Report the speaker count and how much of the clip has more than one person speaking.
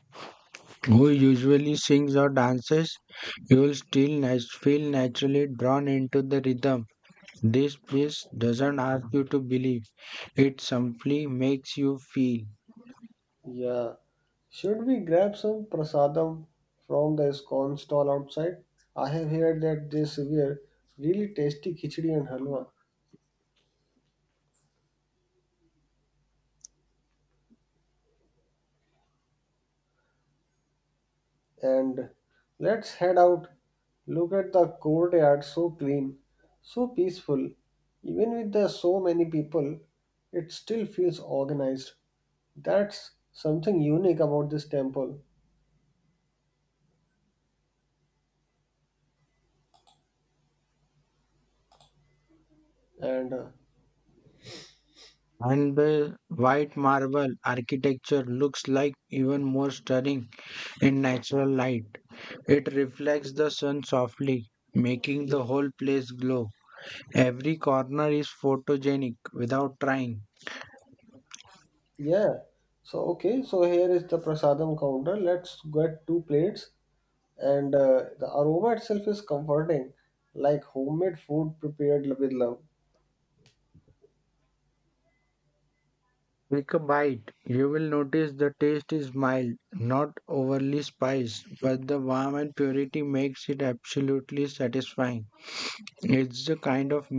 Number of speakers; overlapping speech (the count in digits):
2, no overlap